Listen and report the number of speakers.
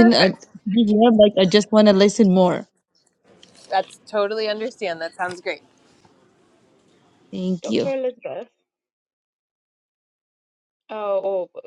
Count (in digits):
3